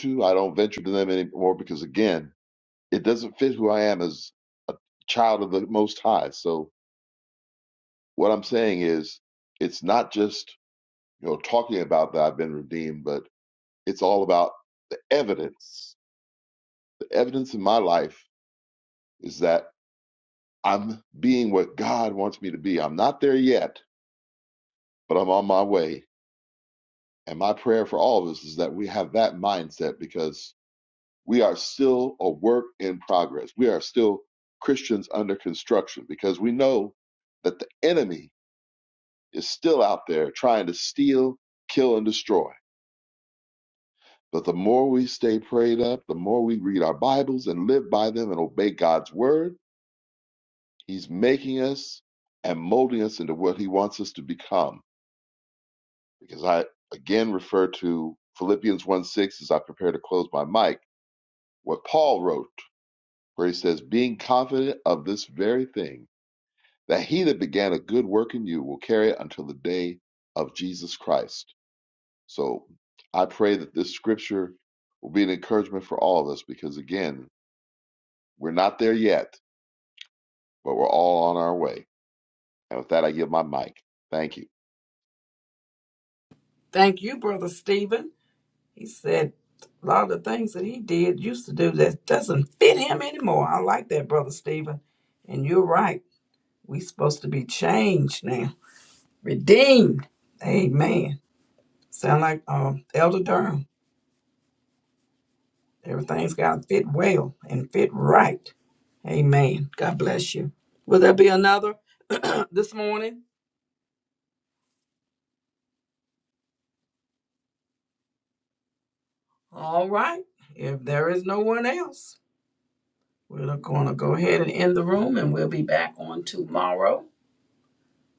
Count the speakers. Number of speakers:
2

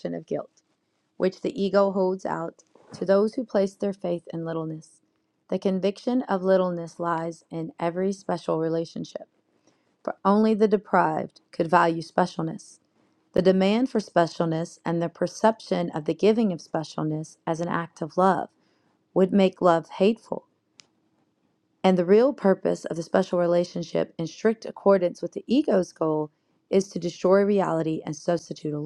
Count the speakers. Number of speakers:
1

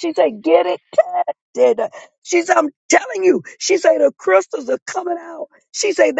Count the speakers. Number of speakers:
1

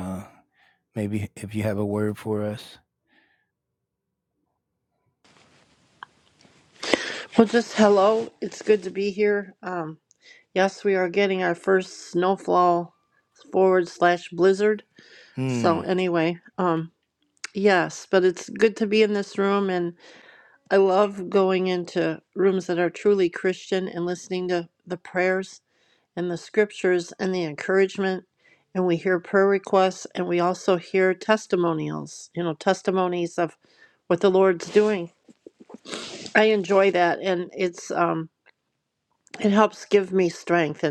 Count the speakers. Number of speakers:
2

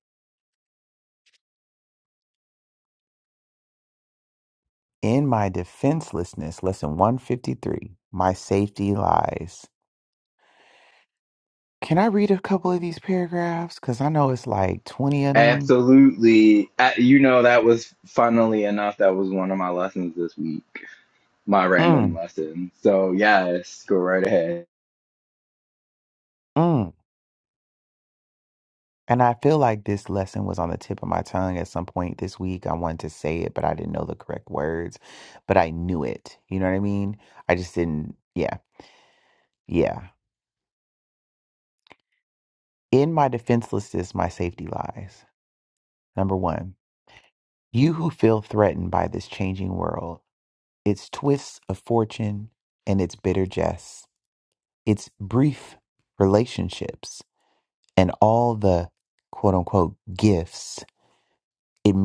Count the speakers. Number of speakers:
2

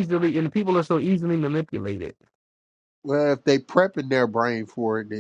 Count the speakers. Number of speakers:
2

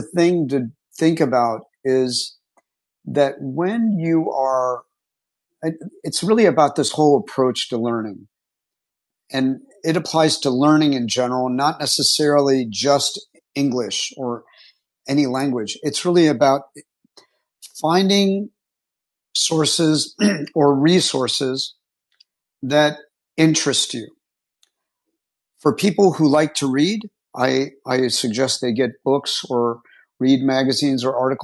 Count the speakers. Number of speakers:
1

